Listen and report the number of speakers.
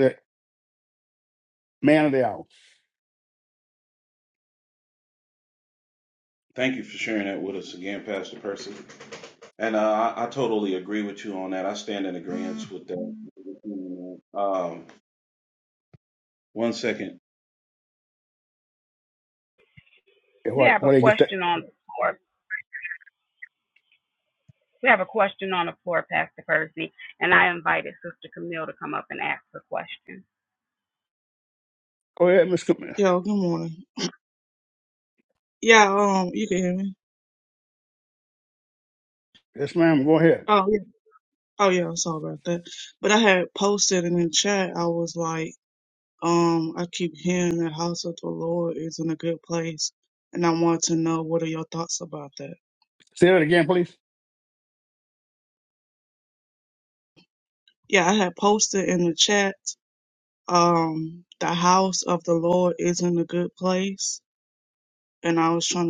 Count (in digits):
4